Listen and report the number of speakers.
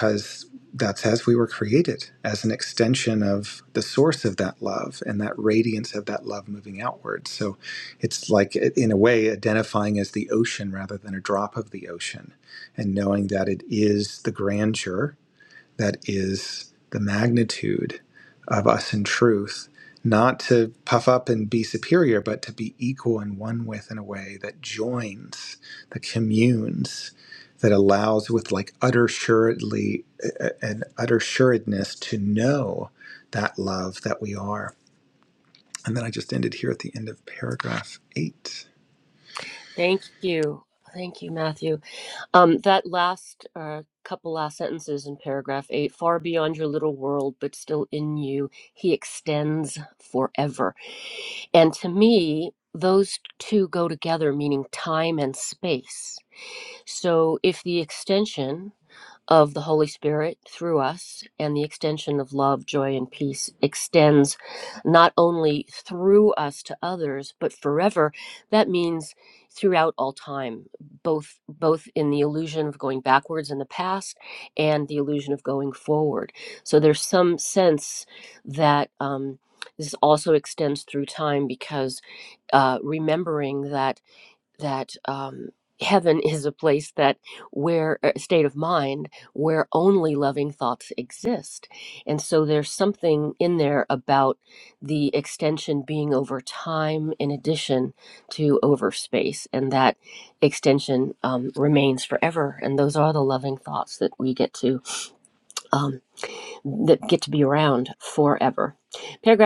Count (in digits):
2